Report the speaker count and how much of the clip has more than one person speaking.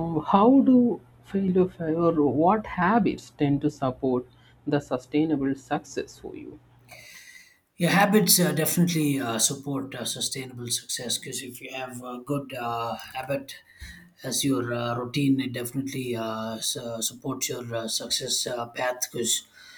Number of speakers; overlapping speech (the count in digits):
2, no overlap